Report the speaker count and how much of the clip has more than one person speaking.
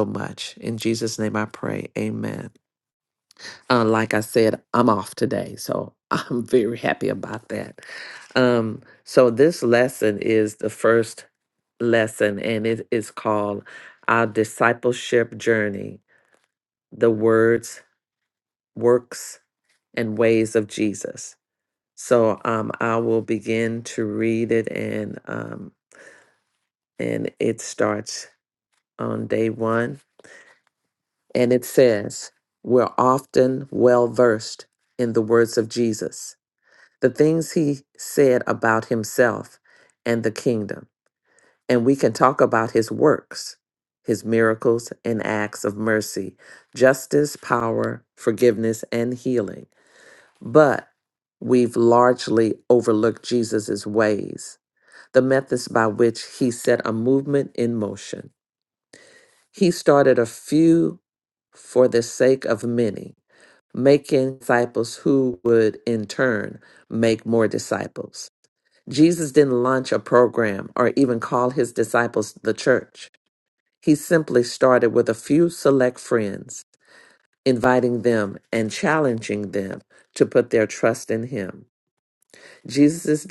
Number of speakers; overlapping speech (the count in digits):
1, no overlap